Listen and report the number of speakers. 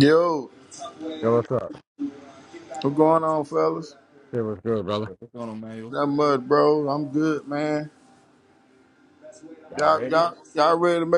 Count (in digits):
3